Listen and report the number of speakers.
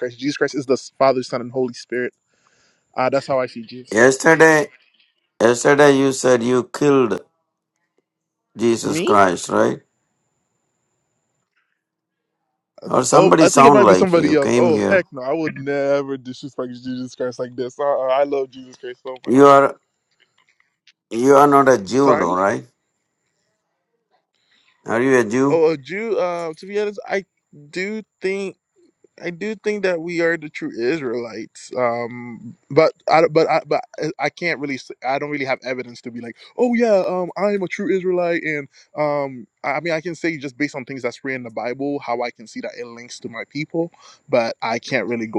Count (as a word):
two